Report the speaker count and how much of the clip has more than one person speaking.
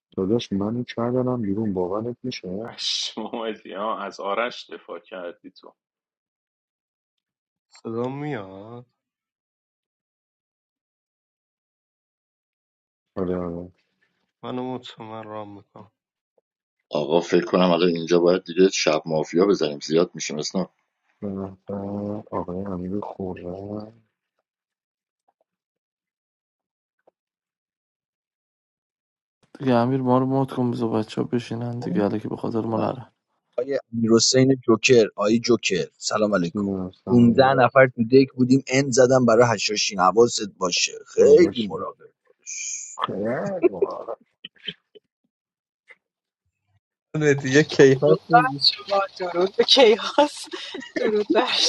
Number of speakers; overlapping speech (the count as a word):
eight, about 4%